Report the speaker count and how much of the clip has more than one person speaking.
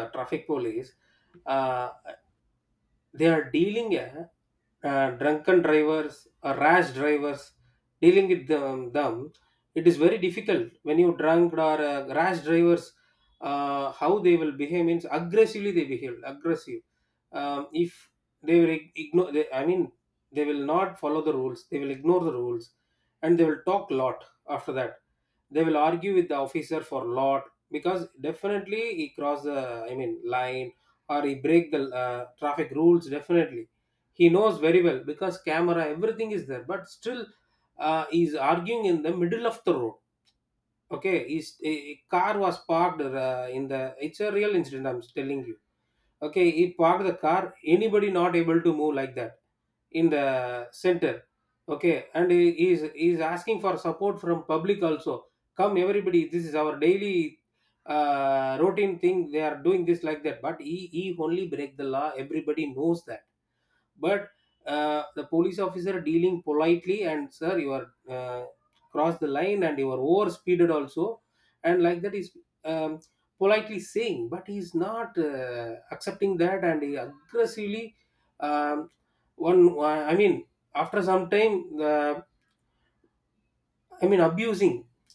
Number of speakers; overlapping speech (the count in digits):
1, no overlap